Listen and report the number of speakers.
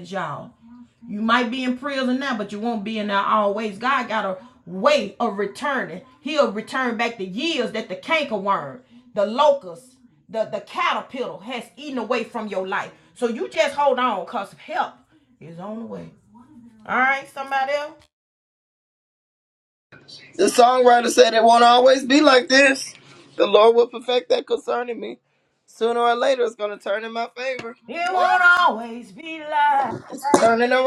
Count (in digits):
2